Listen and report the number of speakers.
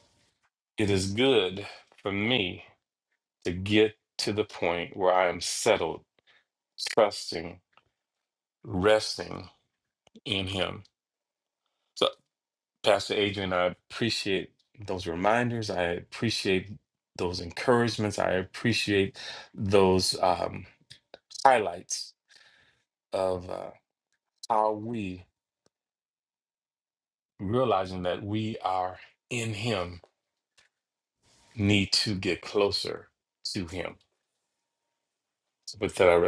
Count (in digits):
1